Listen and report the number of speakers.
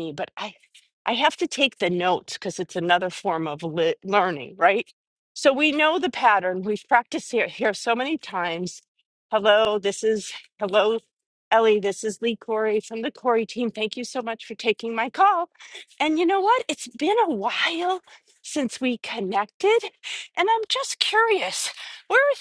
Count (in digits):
1